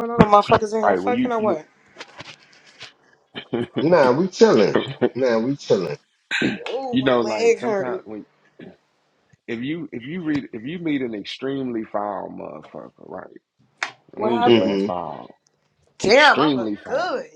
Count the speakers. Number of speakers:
3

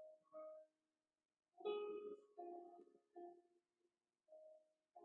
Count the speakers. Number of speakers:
0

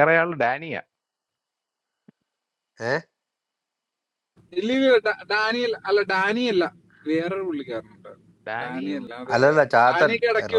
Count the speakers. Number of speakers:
3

